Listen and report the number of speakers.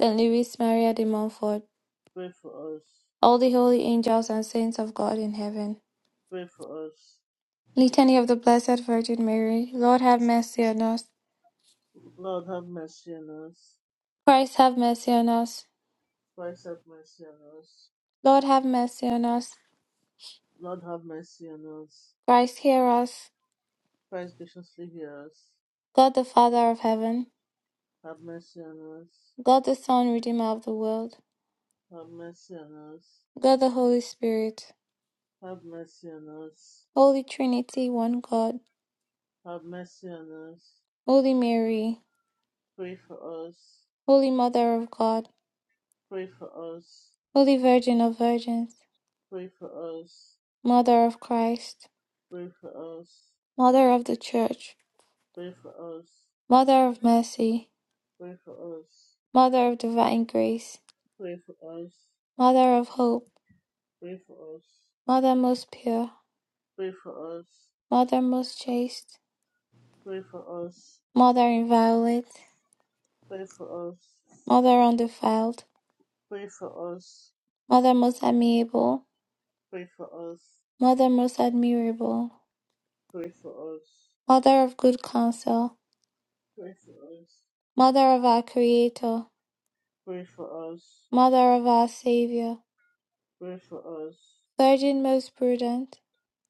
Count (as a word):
two